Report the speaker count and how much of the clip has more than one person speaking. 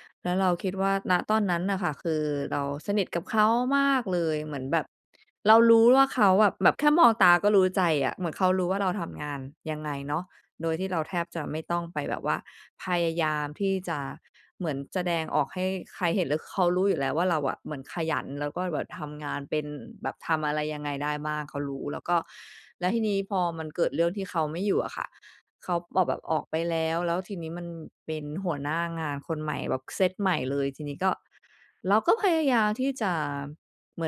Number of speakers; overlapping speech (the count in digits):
1, no overlap